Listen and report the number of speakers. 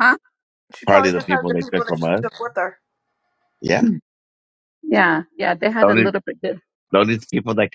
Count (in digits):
3